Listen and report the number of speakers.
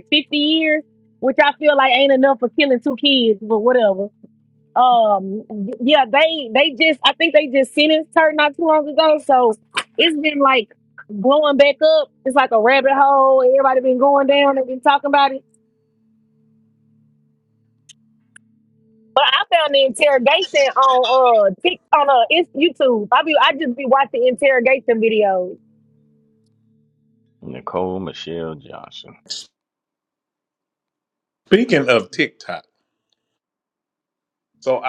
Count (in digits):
3